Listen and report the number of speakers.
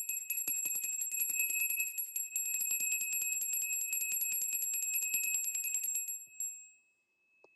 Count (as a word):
zero